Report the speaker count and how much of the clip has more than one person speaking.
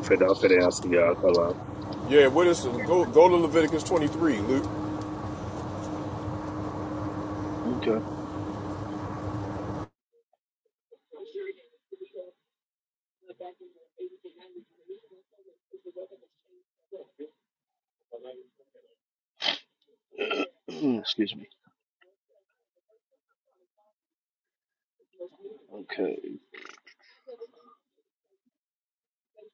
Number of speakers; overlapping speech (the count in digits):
3, no overlap